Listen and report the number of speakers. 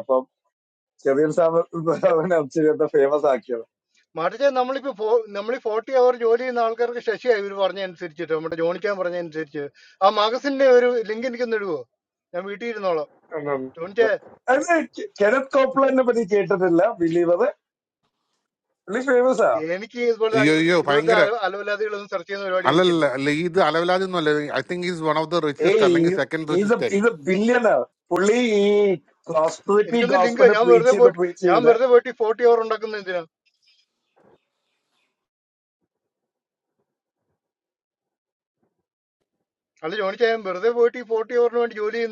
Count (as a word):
three